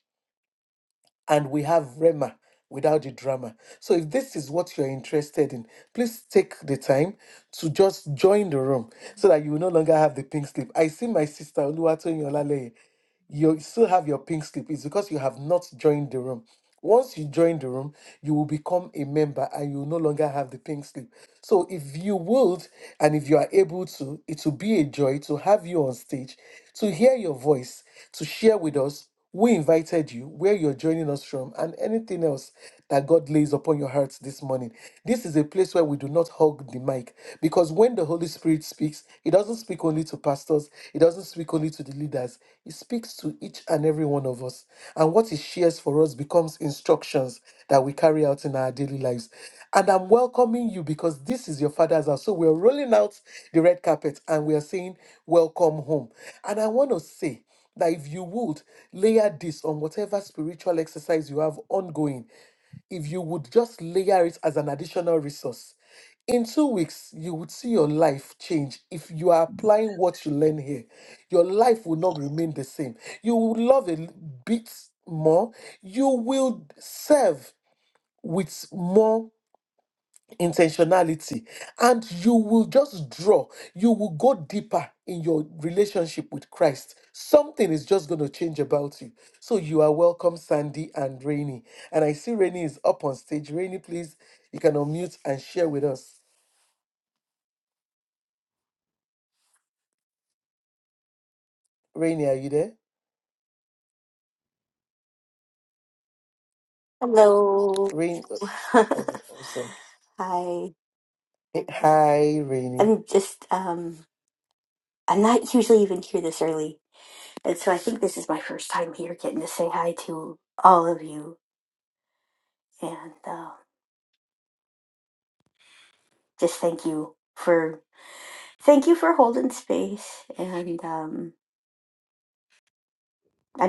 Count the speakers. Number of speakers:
2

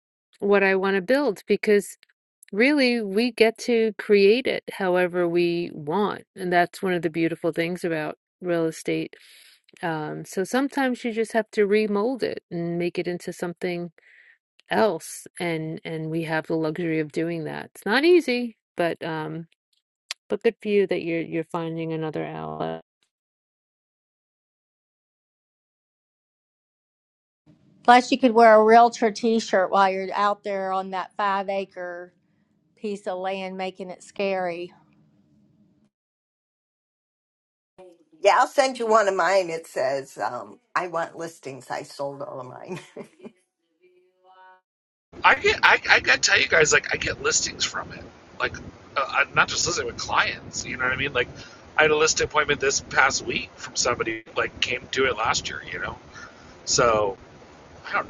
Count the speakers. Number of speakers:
4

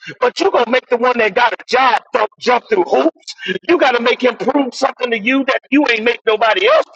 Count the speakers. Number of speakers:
1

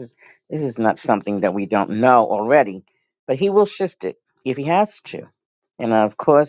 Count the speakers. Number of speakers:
1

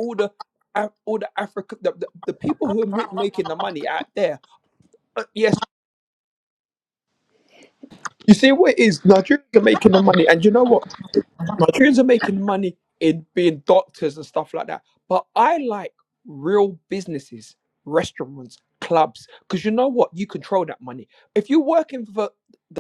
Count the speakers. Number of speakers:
1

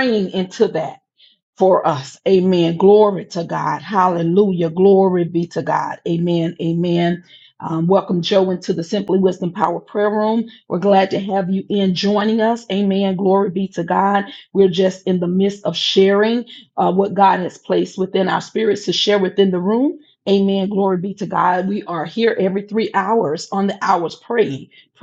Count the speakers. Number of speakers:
1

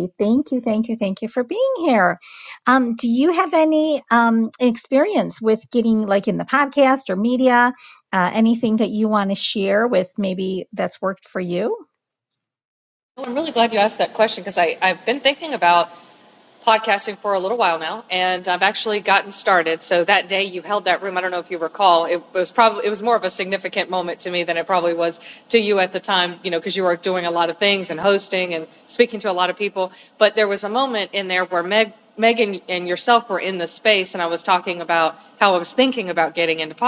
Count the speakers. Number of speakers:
2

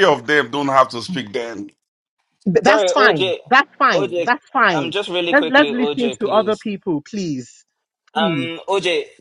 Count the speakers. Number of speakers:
3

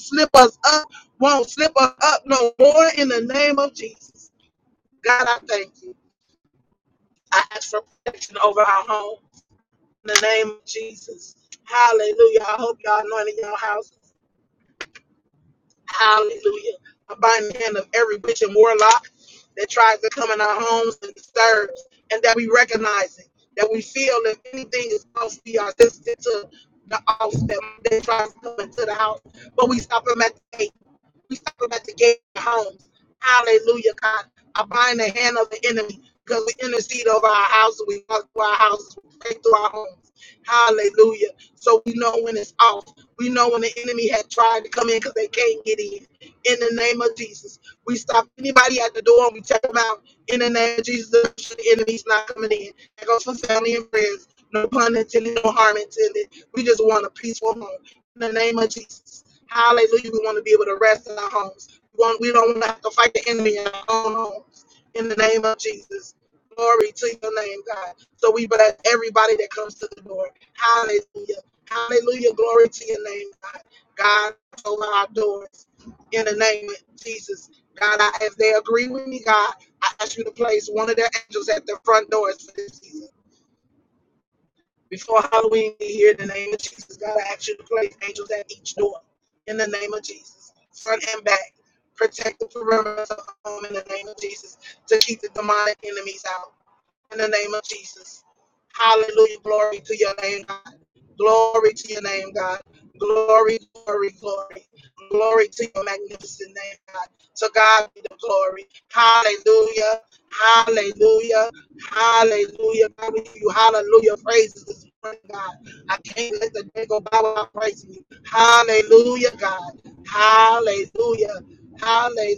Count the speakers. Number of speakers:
1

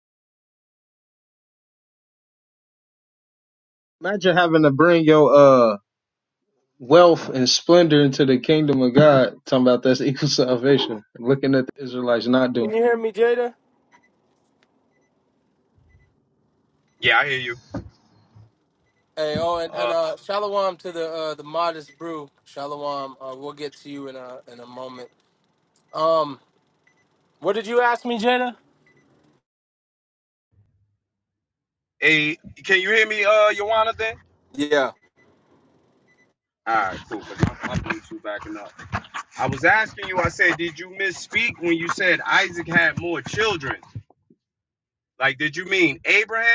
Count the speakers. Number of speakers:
3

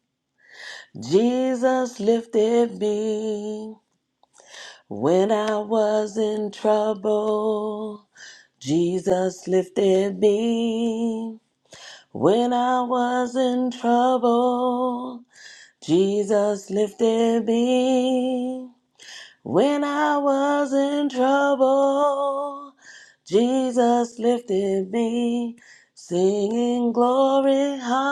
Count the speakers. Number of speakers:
1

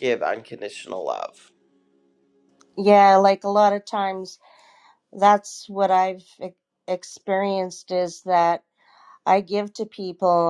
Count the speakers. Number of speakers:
2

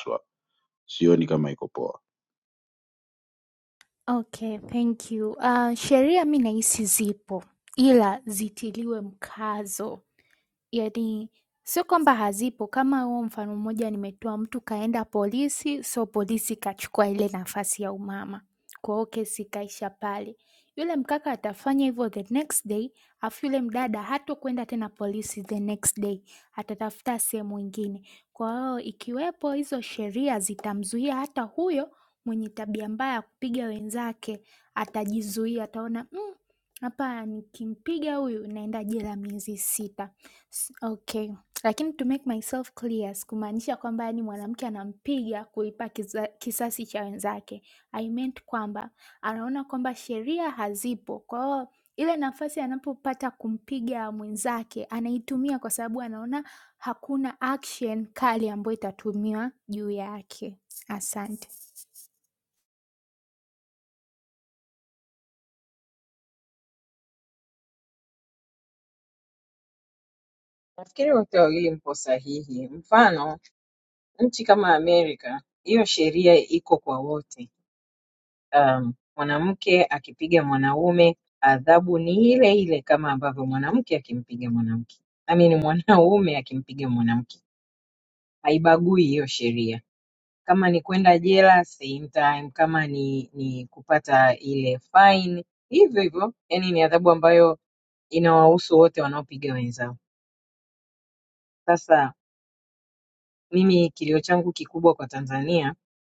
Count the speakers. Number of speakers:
3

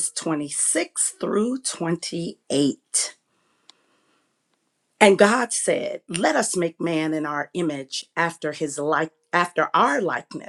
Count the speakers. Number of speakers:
1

